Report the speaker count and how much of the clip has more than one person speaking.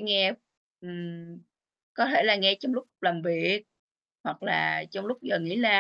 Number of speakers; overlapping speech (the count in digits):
1, no overlap